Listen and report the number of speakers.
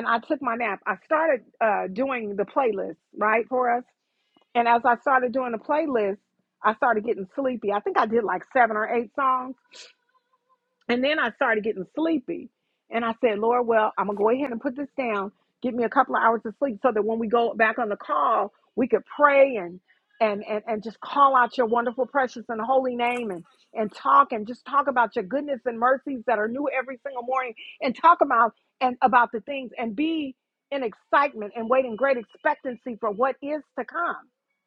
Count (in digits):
1